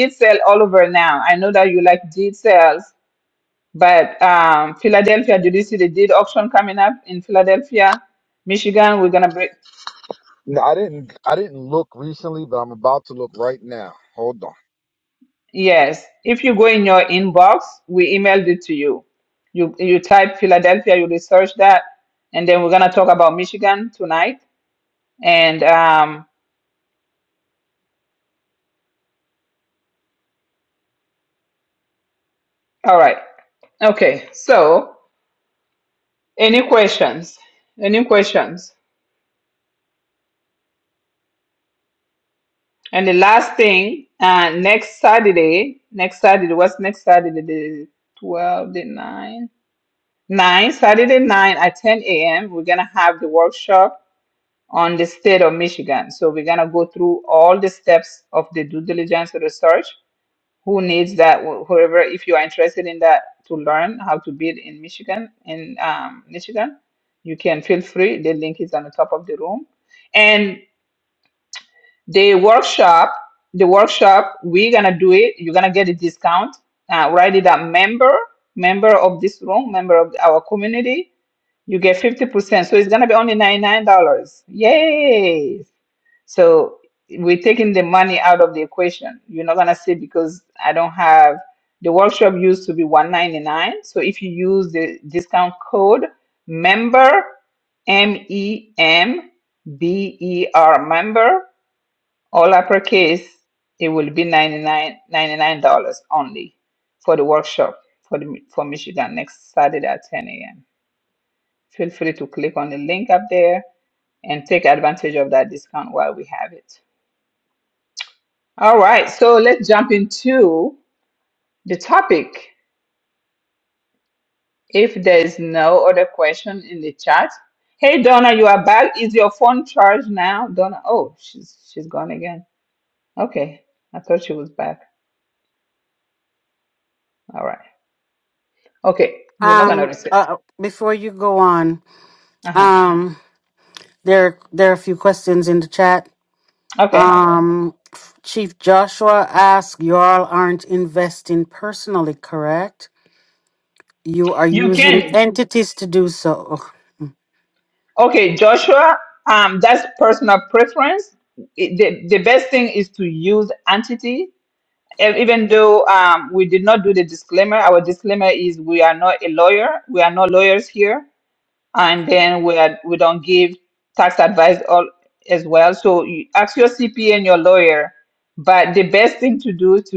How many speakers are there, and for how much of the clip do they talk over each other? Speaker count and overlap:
three, about 1%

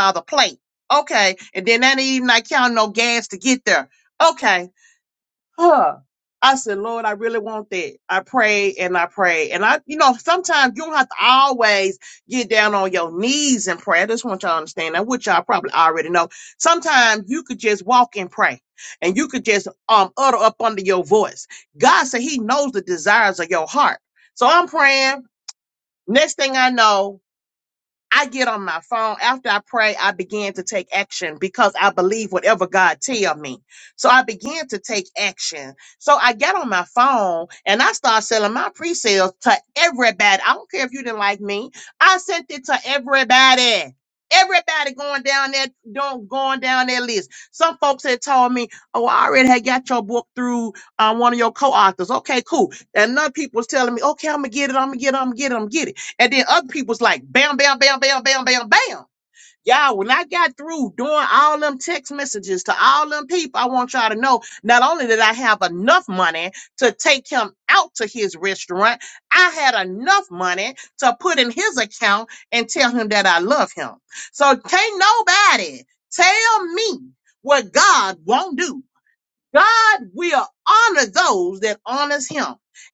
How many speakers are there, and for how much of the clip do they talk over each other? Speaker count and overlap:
one, no overlap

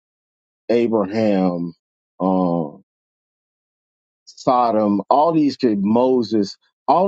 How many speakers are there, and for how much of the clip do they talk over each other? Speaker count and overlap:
one, no overlap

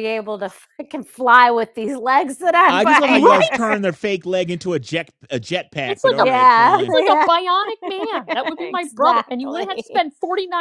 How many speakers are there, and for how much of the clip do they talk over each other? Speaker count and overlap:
three, about 34%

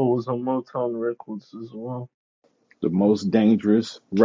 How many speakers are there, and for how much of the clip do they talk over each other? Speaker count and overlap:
two, no overlap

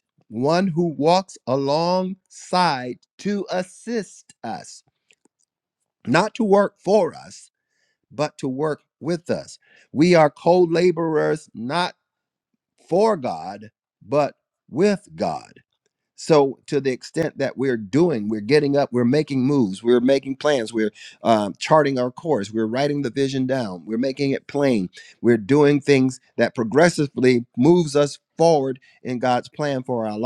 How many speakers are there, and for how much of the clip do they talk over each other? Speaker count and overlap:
one, no overlap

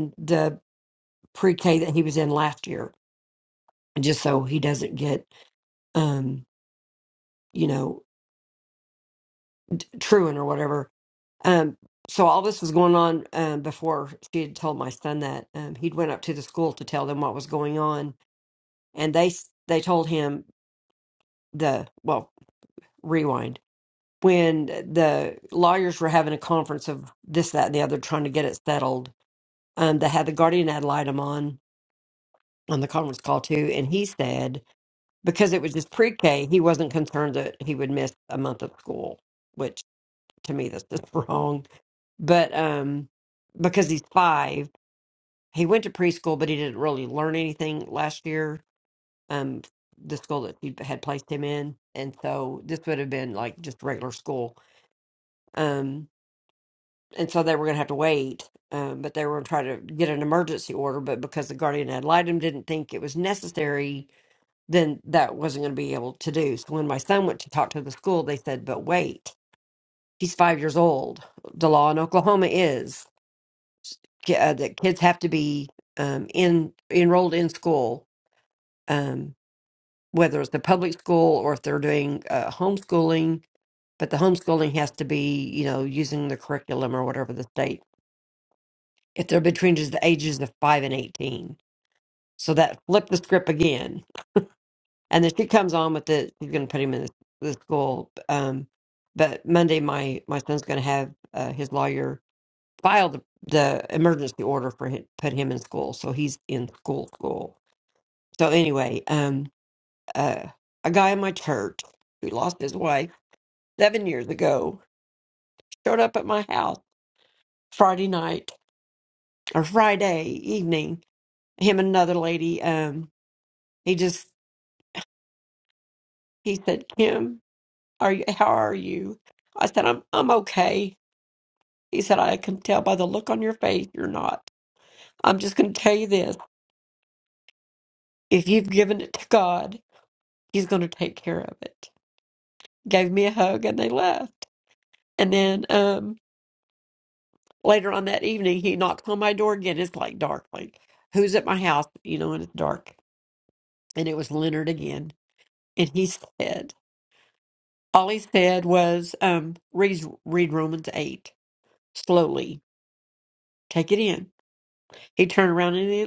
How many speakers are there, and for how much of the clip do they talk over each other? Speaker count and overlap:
one, no overlap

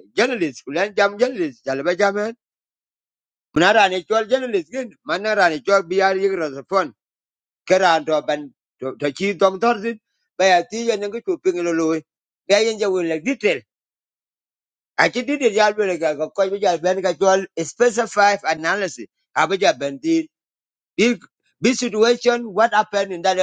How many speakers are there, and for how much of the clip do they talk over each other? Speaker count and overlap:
one, no overlap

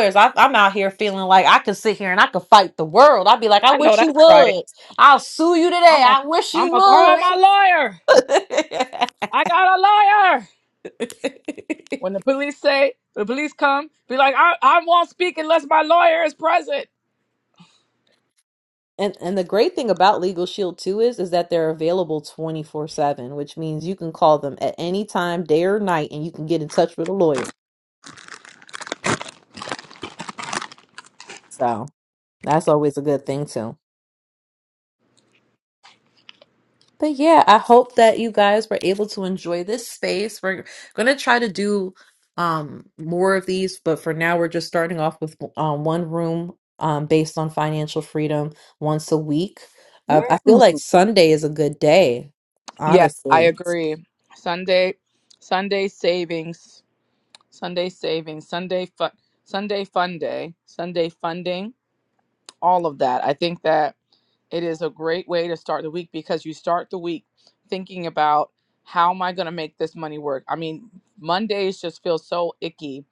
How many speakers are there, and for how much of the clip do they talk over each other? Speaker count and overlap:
two, about 4%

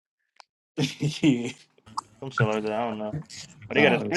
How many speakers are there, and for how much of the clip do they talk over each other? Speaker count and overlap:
two, about 12%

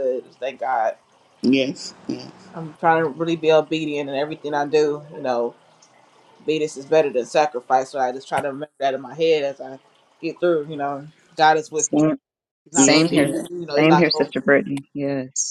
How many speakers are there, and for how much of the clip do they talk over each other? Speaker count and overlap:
three, about 9%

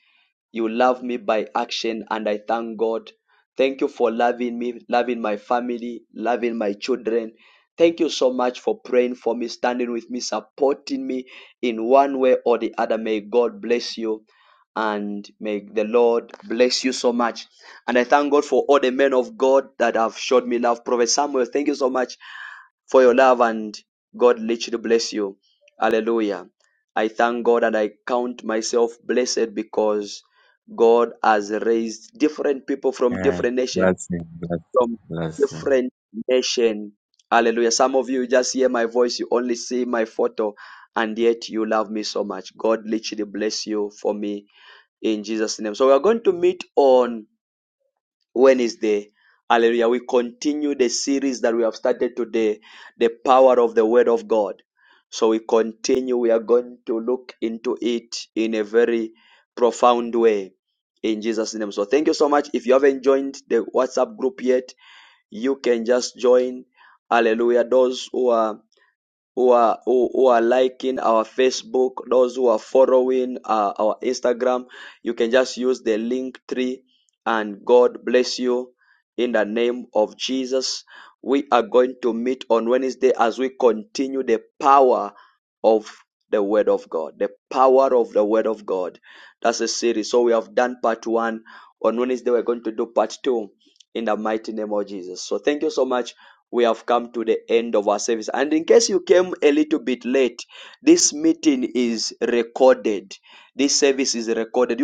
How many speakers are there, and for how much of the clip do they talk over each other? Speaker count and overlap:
two, about 1%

